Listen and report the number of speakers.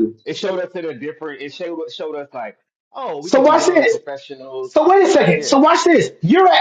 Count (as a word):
two